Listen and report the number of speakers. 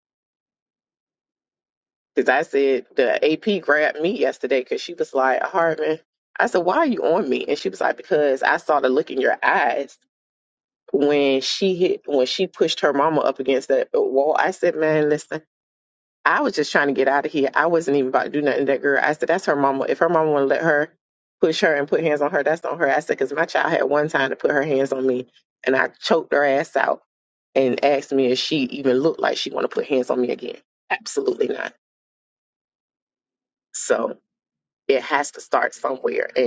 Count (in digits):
1